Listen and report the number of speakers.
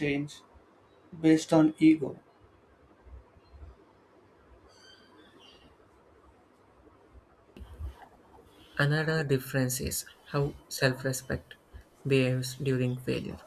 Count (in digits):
2